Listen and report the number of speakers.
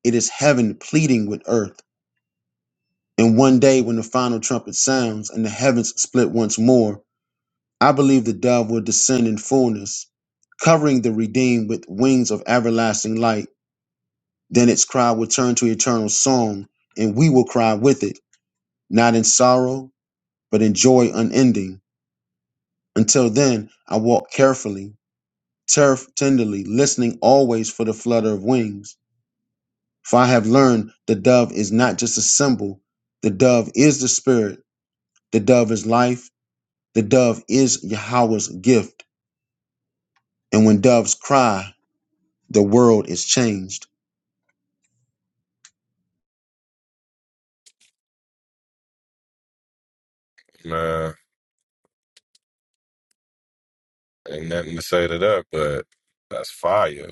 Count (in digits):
2